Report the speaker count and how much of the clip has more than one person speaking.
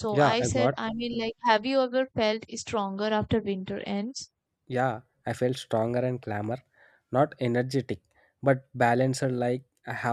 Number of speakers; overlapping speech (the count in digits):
2, about 6%